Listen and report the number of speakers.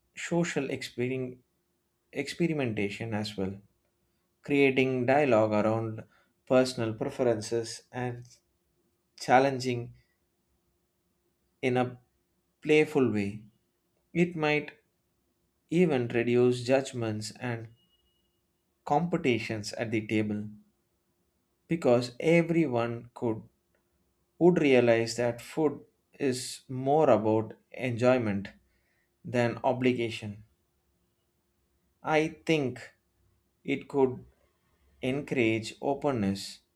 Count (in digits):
1